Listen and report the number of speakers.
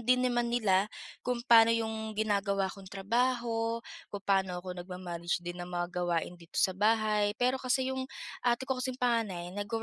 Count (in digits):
1